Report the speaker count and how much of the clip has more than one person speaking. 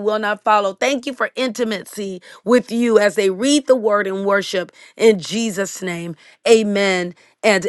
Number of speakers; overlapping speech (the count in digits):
1, no overlap